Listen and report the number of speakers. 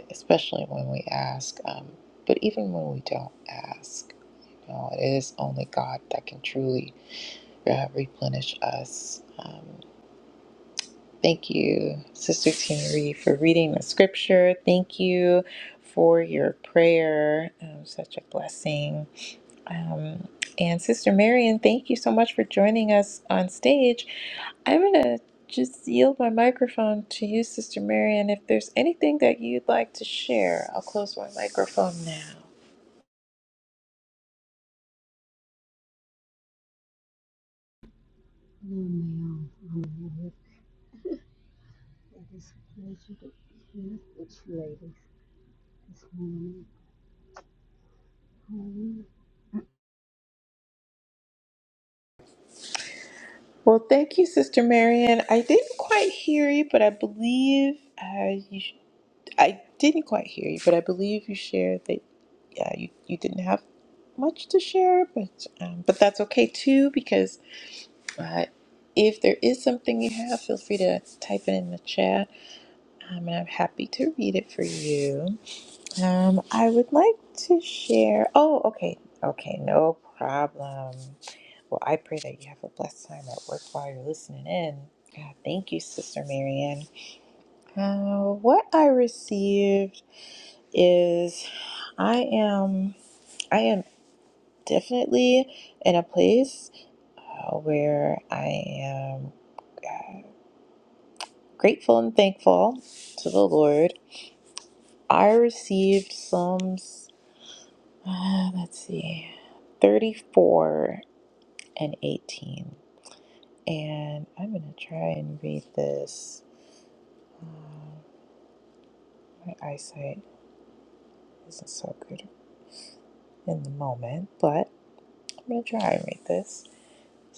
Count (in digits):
2